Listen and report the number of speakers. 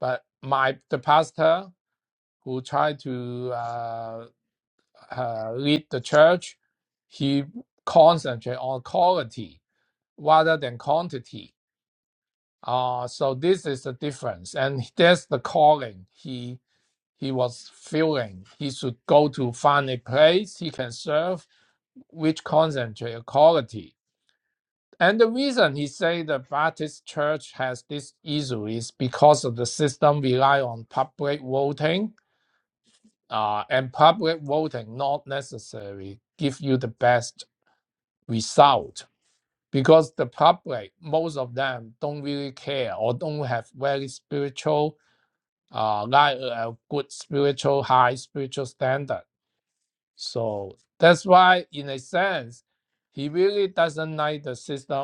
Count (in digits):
1